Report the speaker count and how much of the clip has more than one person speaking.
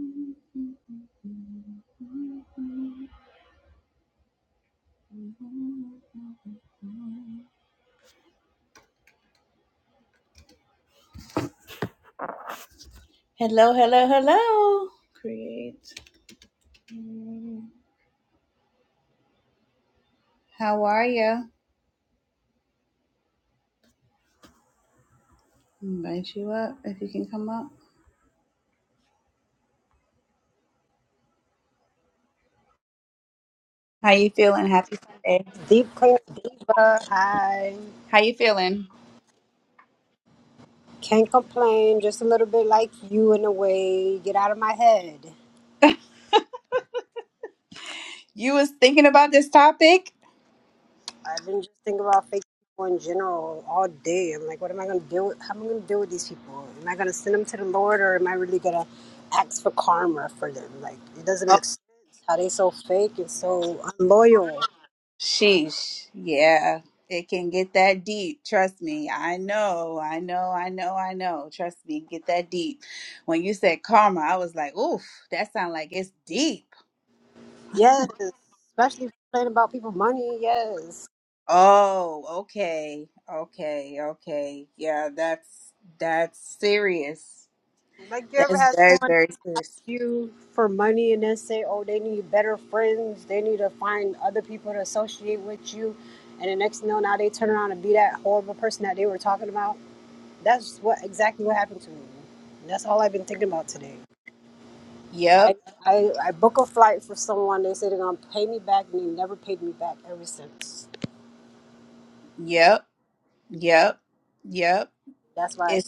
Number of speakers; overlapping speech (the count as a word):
two, about 1%